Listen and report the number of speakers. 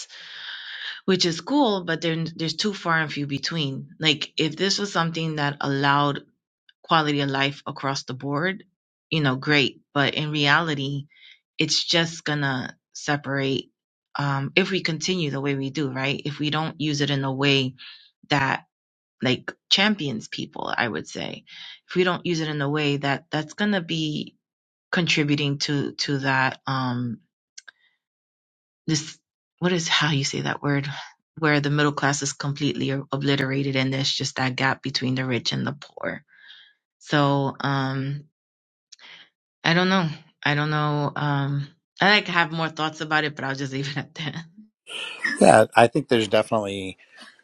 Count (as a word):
two